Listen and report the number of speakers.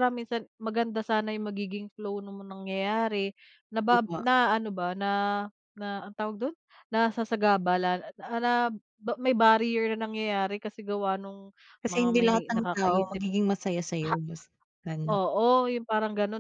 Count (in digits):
2